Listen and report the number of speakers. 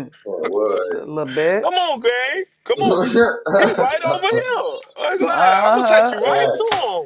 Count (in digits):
3